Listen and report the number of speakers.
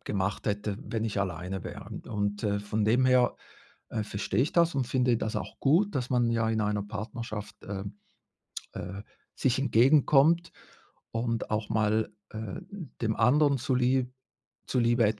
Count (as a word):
one